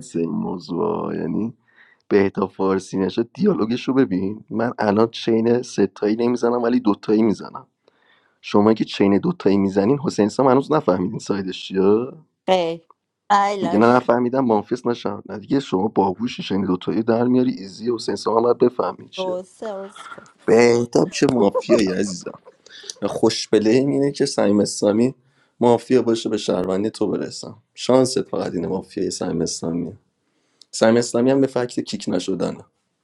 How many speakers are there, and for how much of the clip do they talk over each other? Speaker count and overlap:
two, about 2%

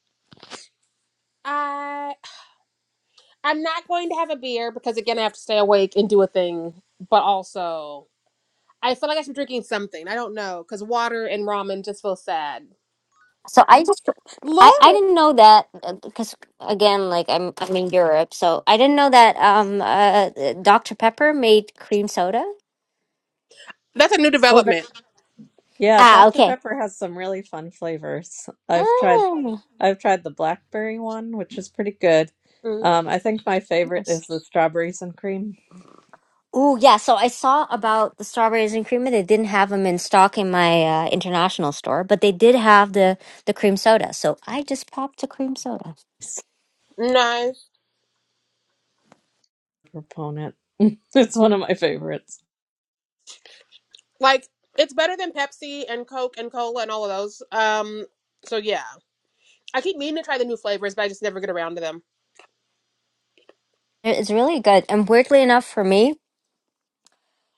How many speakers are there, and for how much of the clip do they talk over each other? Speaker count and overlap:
three, about 3%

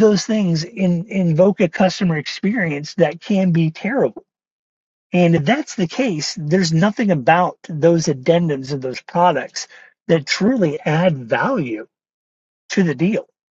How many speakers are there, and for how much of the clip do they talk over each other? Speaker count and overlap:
one, no overlap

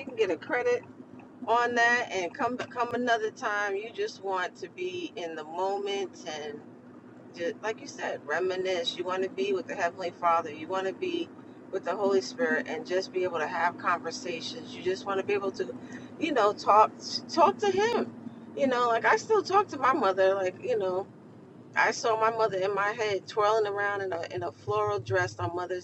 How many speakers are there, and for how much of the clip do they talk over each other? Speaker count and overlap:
one, no overlap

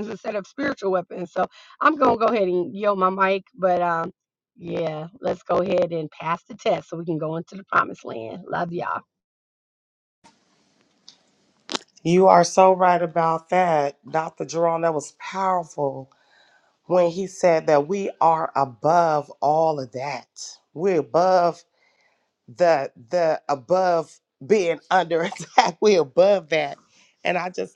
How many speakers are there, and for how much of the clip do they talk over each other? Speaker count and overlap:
two, no overlap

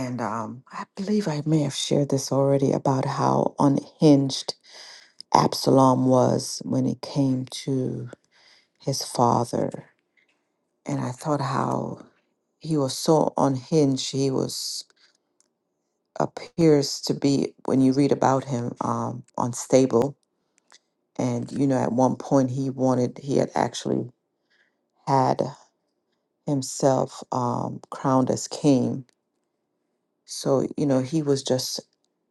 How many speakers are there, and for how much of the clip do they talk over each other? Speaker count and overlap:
one, no overlap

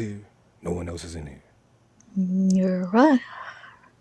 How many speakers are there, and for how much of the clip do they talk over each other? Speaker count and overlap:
two, no overlap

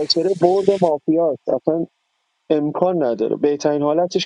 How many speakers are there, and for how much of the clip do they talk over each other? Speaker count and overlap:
one, no overlap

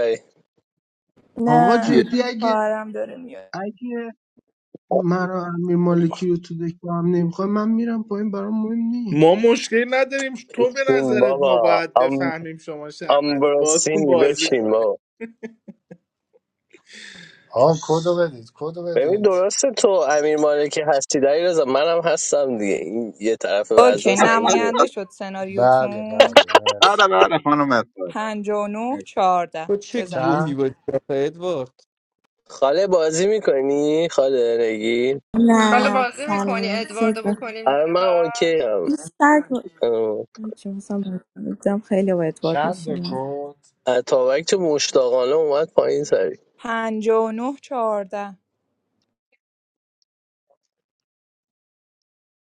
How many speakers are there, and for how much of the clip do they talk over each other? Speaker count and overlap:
nine, about 19%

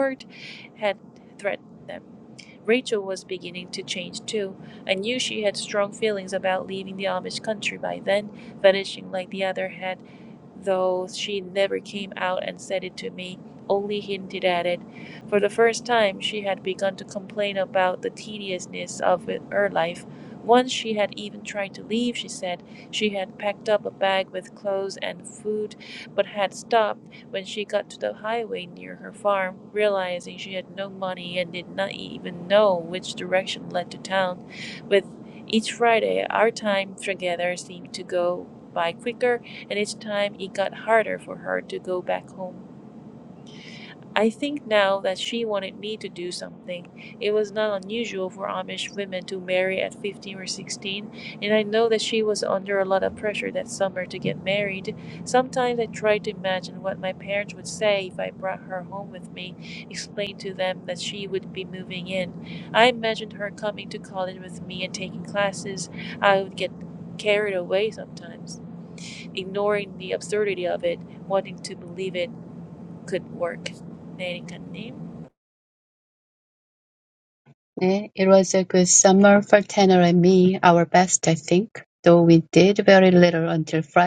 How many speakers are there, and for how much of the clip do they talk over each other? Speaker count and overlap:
two, no overlap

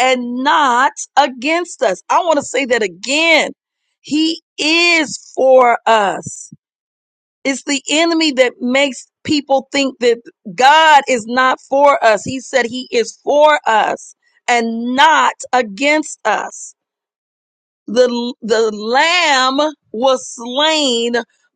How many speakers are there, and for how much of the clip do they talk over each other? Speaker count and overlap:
one, no overlap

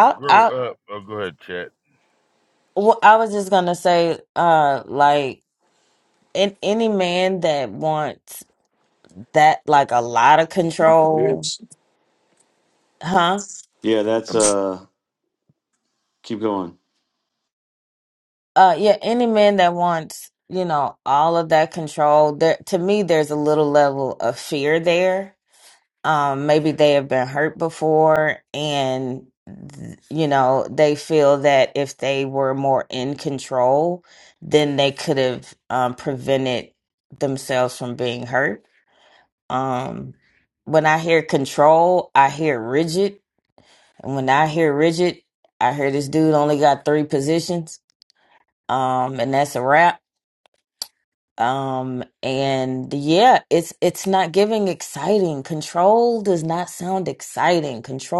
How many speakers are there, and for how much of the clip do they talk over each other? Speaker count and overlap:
three, about 1%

